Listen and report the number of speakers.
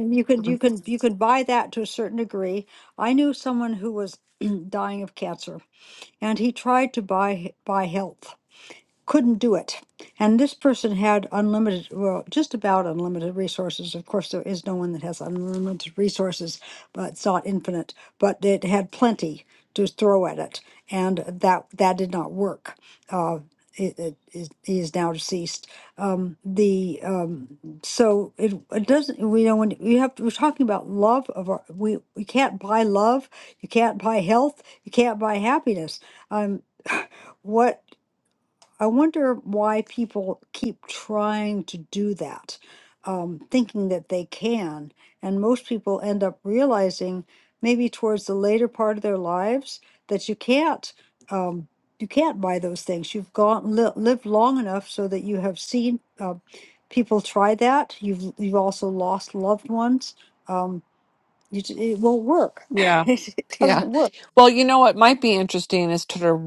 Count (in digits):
2